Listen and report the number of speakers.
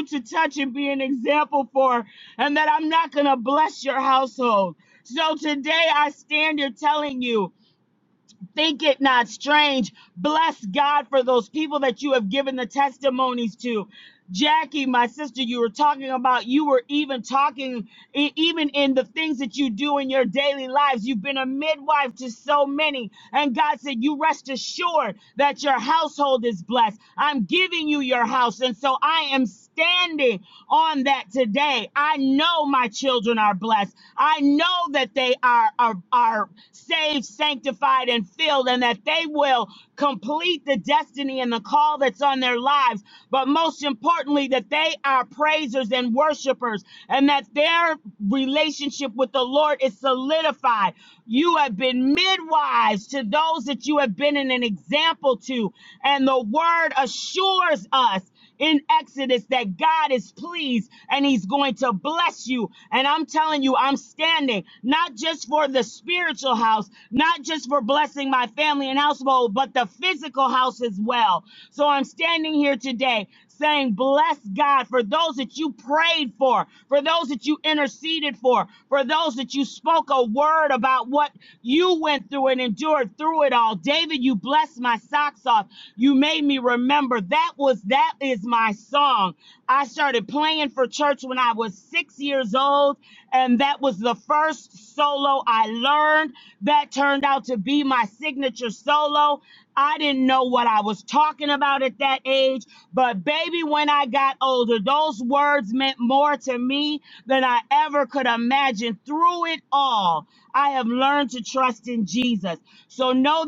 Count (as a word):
one